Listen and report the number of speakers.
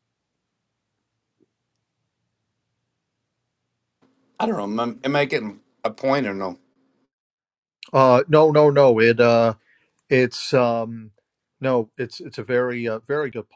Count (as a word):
two